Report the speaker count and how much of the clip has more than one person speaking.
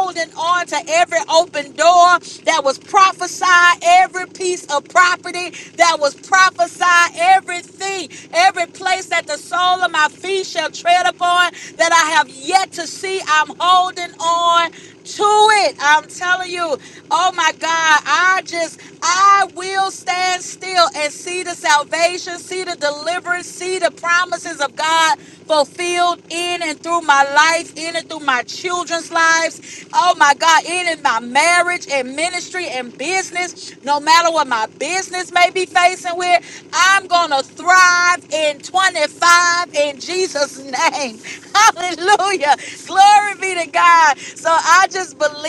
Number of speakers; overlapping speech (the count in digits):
1, no overlap